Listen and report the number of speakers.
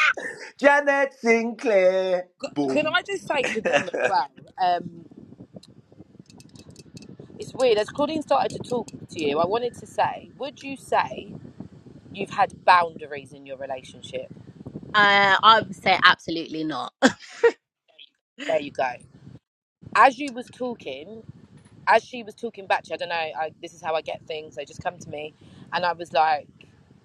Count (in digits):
3